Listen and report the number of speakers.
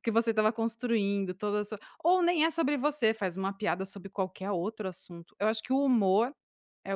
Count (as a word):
one